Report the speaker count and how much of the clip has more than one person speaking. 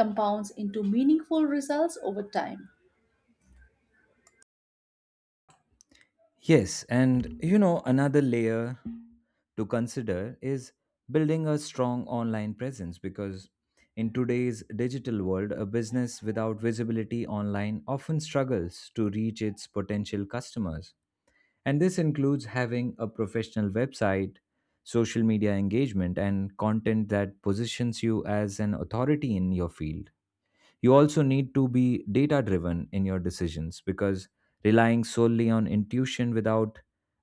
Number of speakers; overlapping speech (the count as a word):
two, no overlap